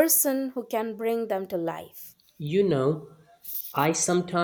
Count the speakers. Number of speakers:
2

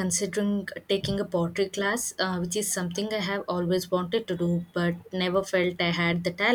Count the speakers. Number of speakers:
1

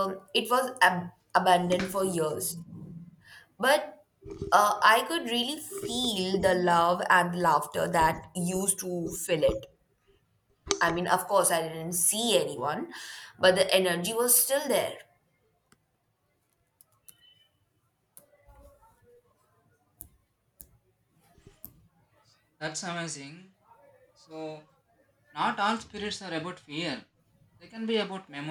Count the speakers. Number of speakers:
2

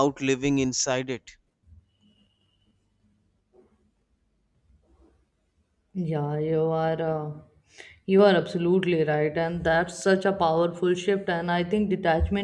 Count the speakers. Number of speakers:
2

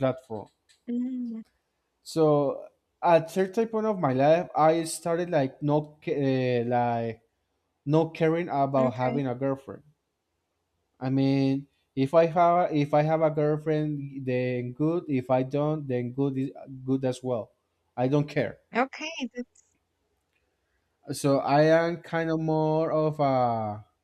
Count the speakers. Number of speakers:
2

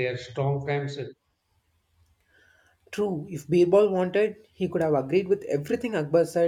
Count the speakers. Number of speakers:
2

